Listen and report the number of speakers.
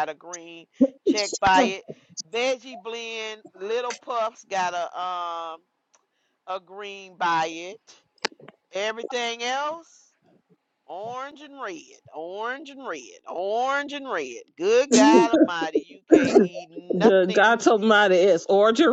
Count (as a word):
two